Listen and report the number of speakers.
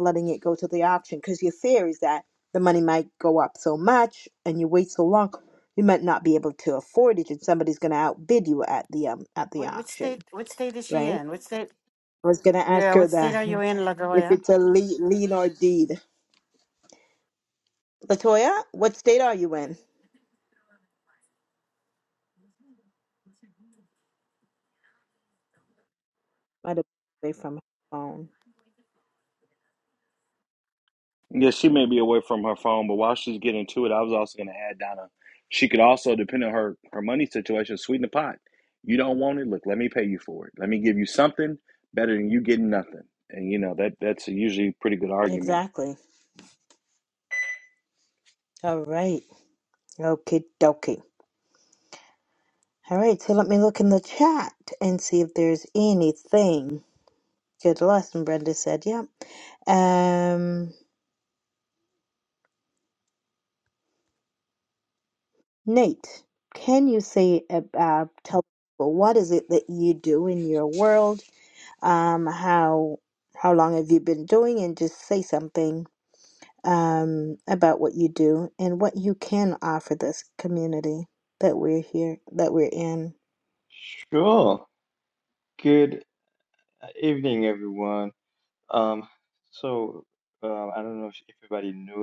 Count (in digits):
4